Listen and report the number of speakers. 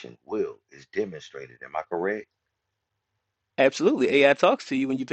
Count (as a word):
two